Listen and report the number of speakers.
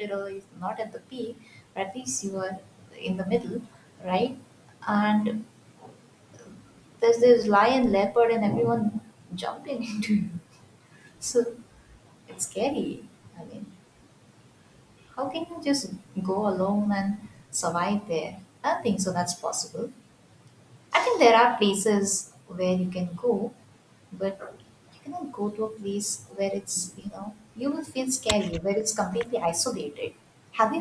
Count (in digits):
1